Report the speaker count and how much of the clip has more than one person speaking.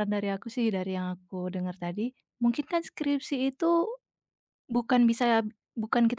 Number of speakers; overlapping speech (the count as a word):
one, no overlap